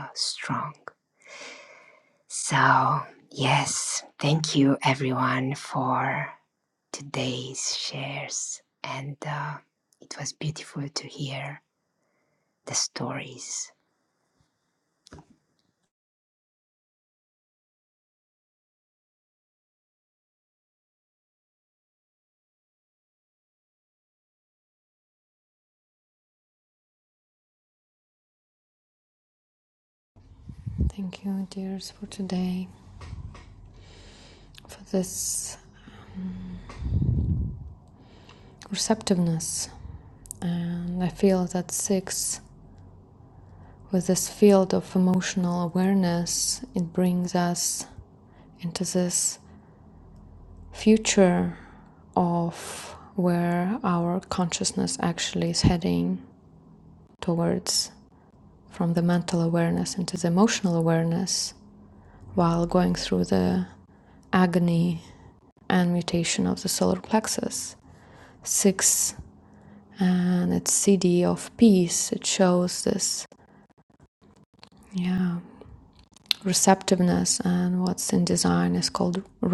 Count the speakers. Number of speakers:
2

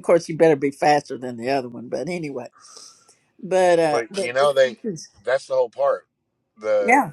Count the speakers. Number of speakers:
2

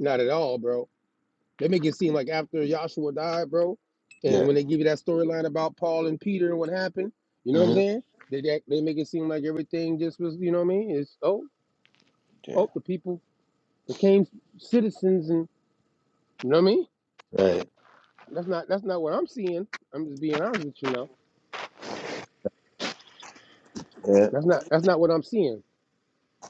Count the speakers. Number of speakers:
2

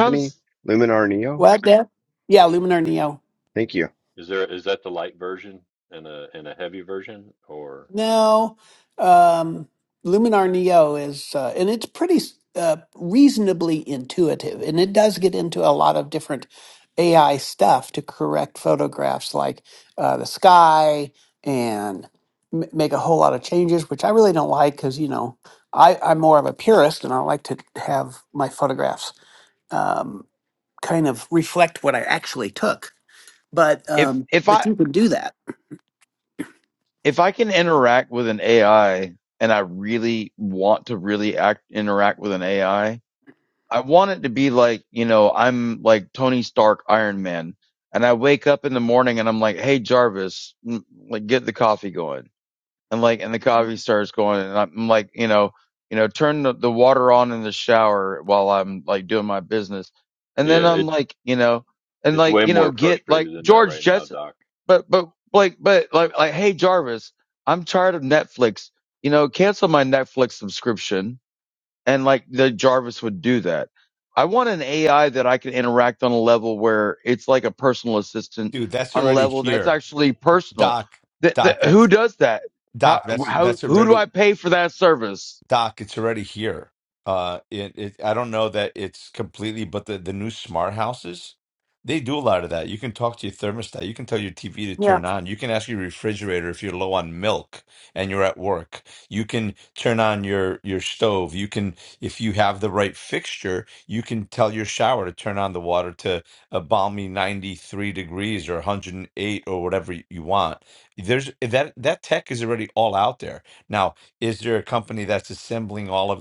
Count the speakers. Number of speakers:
5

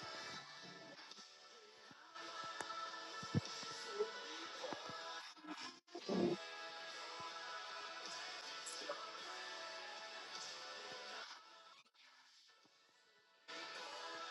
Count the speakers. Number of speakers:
0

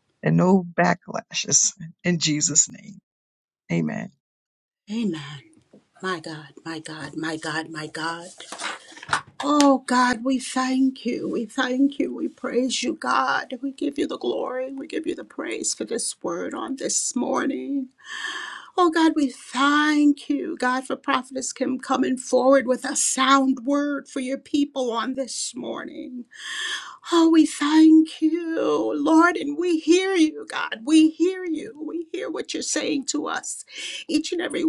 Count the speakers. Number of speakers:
2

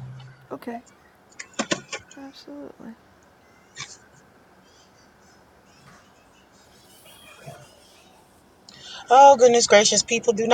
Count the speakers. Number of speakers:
2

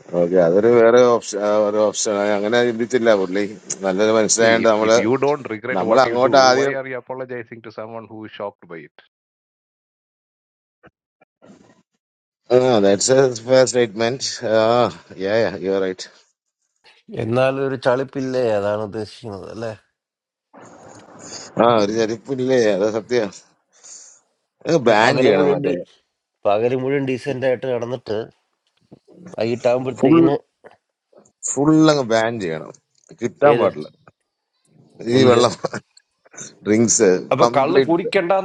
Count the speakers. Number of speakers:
3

